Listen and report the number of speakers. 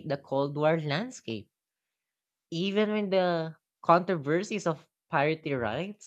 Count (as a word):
one